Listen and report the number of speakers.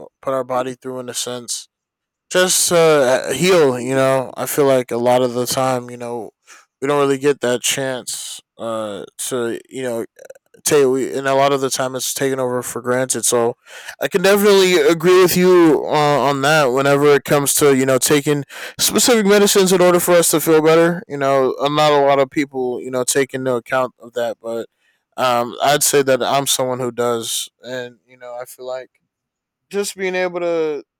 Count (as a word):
one